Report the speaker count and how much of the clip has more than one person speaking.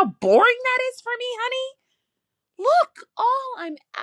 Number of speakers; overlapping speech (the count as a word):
one, no overlap